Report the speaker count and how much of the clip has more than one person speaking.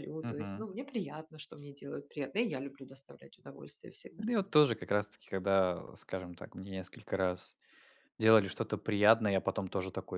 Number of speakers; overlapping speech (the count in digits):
2, about 4%